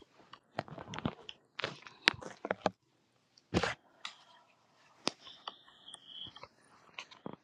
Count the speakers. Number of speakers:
0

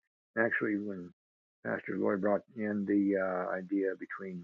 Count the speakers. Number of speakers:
1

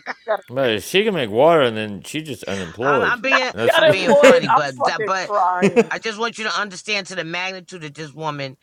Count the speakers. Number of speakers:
3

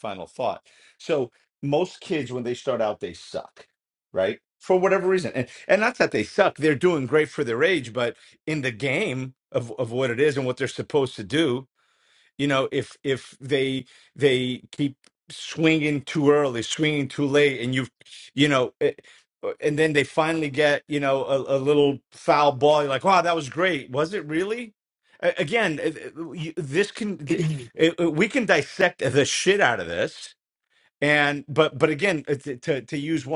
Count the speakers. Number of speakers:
1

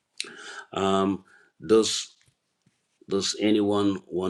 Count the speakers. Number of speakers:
1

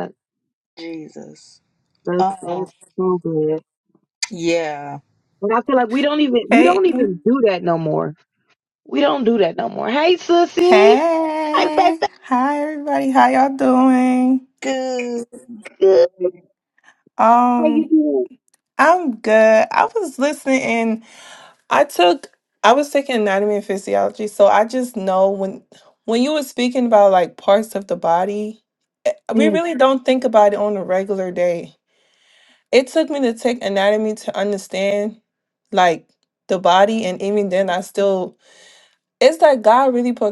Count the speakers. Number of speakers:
3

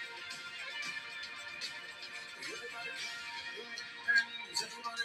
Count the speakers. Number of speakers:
0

